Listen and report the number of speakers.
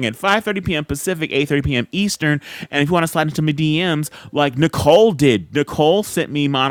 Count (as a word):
one